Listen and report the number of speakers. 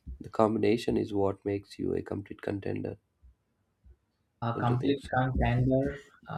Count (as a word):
two